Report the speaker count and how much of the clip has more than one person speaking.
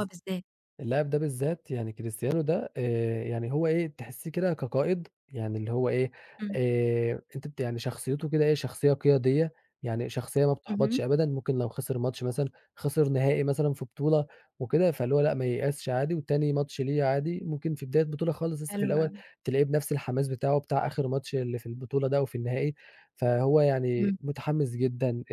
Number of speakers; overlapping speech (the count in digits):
2, about 4%